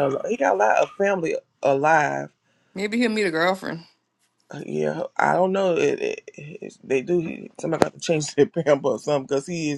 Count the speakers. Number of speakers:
2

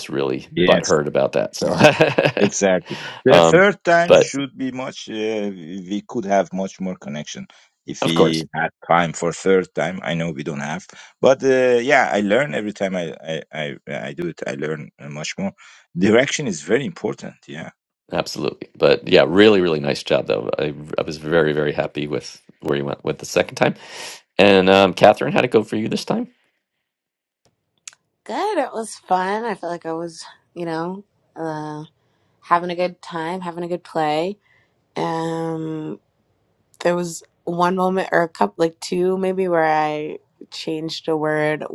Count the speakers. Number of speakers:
3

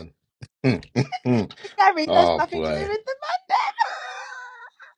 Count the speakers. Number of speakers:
2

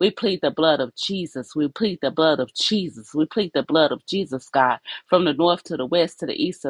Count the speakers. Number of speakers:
1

